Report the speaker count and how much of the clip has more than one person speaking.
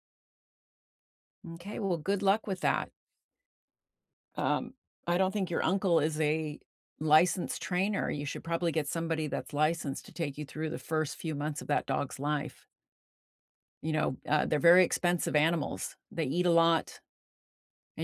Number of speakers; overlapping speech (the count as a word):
one, no overlap